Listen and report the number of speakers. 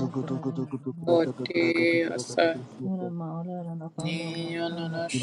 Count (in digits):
3